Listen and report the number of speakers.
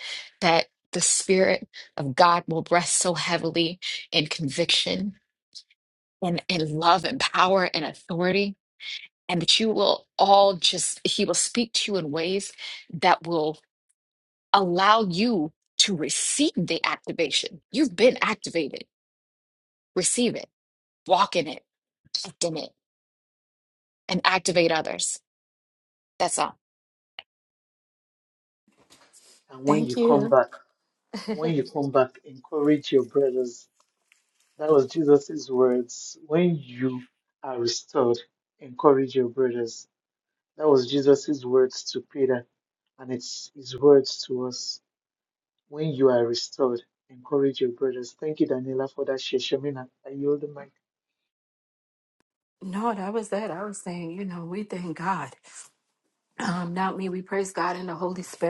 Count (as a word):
three